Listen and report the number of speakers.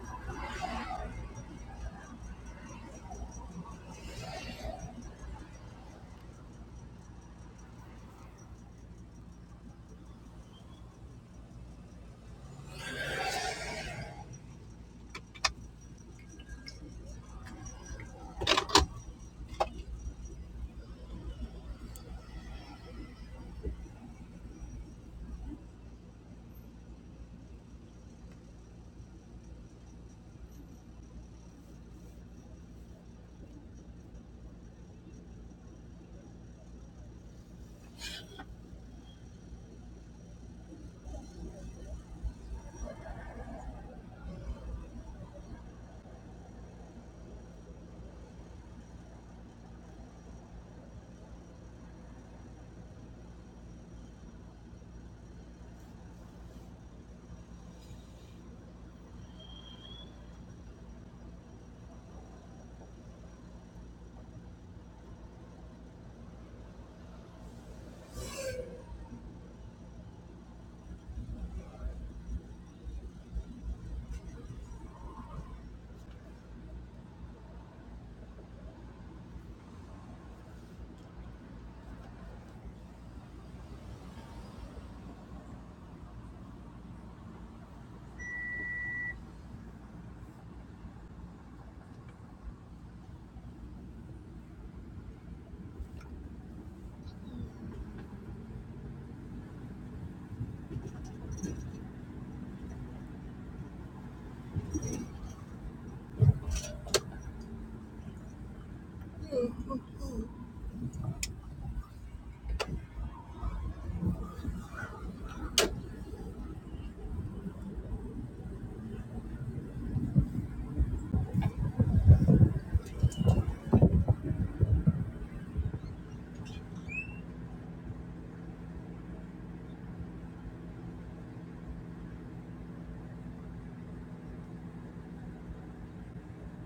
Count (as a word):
zero